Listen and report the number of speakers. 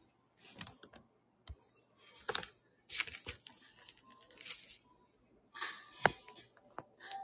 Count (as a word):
zero